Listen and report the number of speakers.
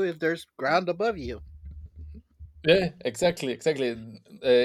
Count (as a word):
two